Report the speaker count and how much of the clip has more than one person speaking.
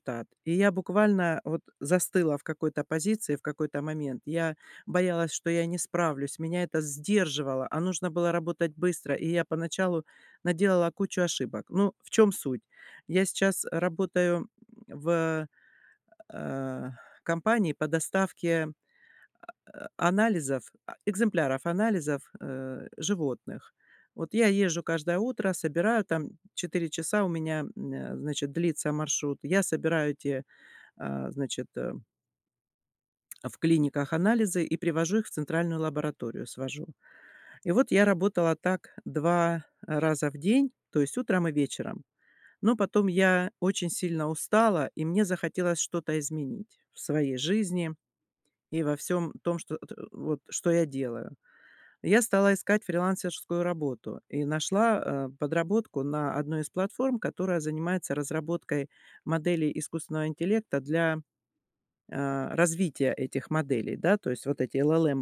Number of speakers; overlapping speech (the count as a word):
one, no overlap